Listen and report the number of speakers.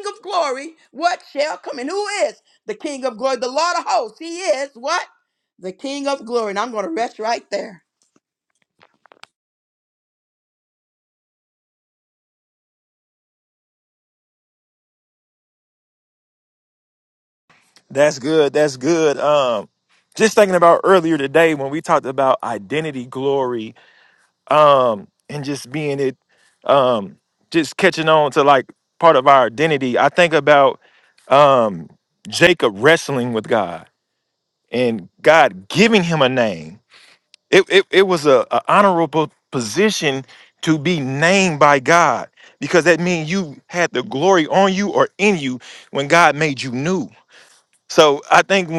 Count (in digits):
2